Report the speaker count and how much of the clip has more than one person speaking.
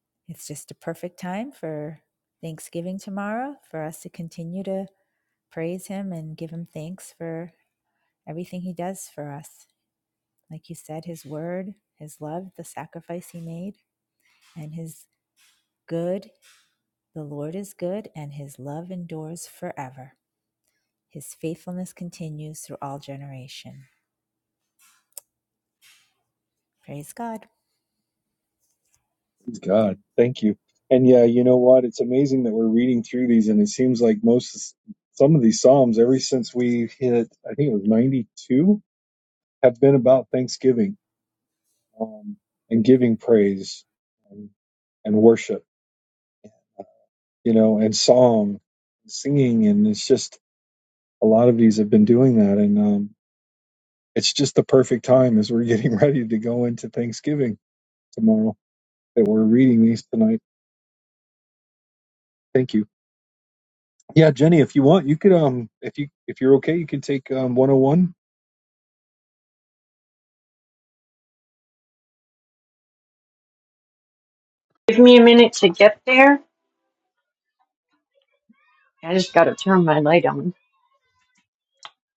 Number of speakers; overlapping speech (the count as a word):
three, no overlap